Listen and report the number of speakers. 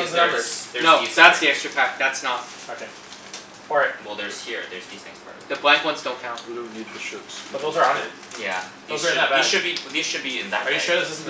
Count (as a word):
four